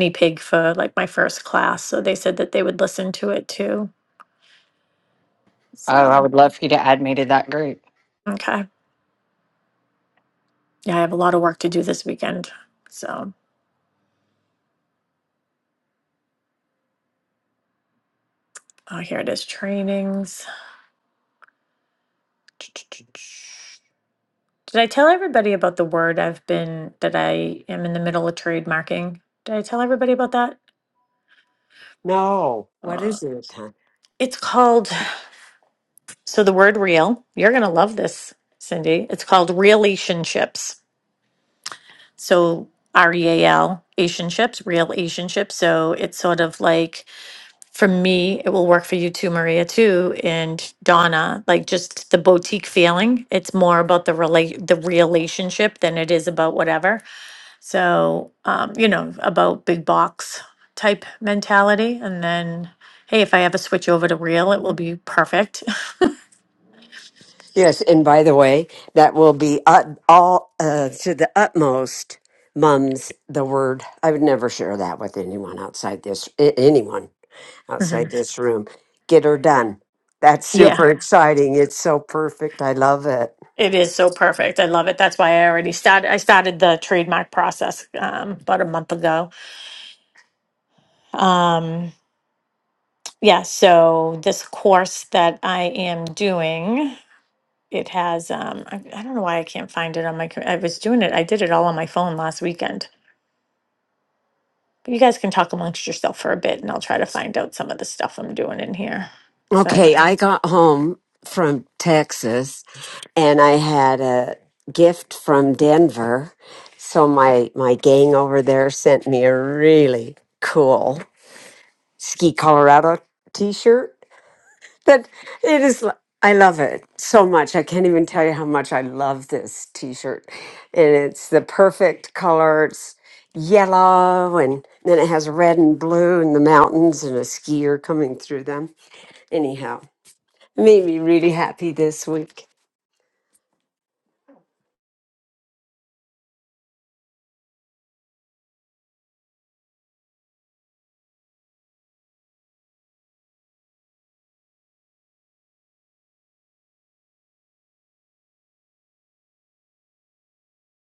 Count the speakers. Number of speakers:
3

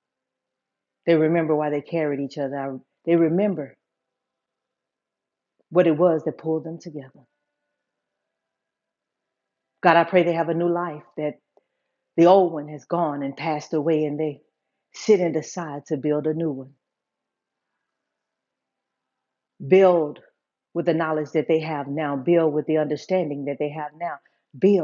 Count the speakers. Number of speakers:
1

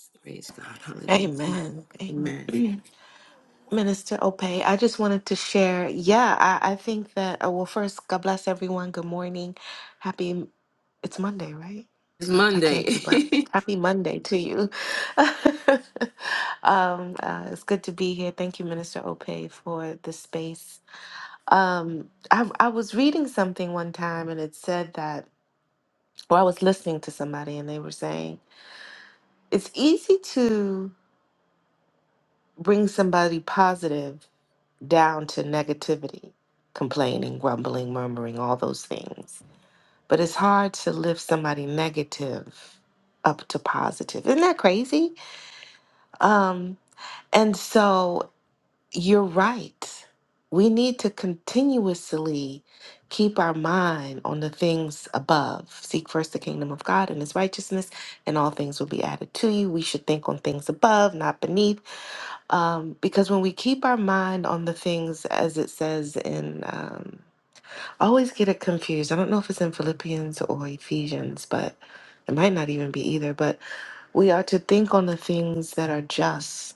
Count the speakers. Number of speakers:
2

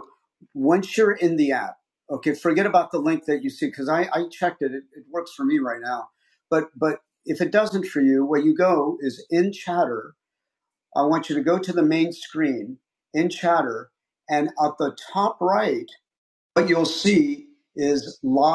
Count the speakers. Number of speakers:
1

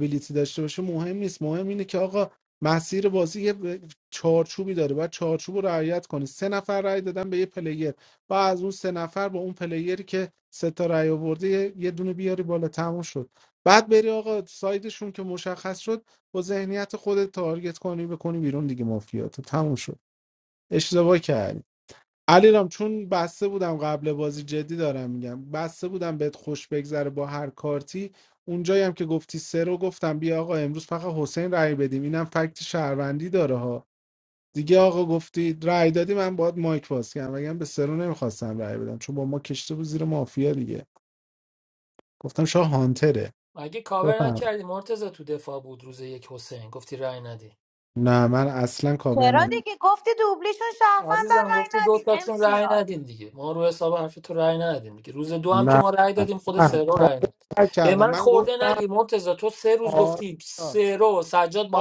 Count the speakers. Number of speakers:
3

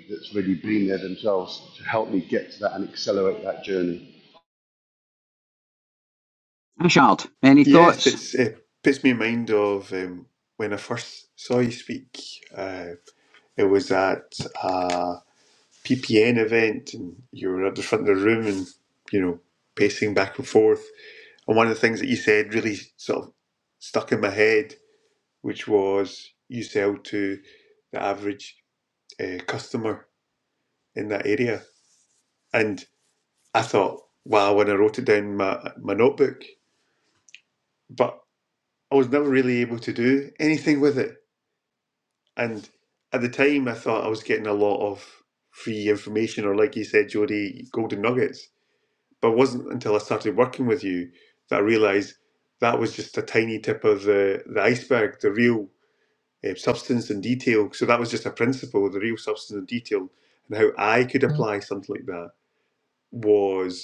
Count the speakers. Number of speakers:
3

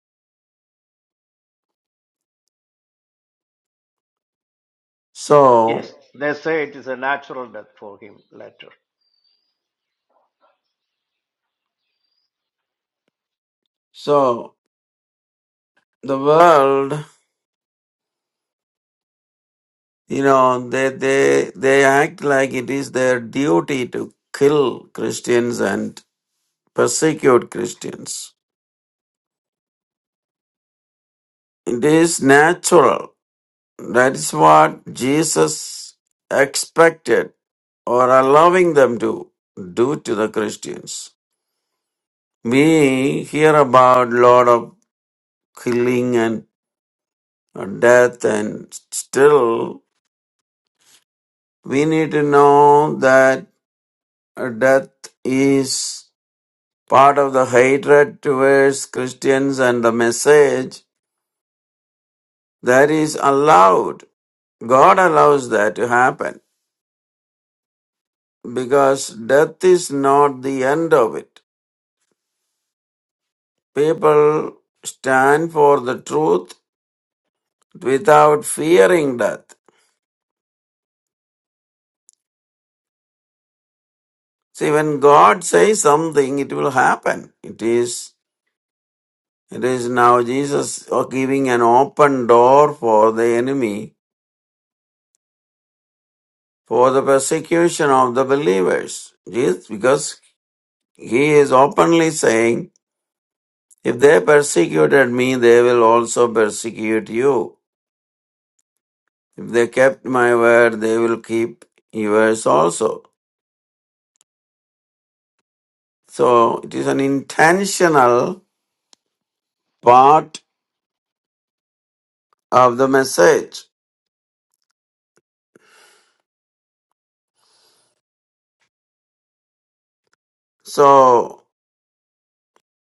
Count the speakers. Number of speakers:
2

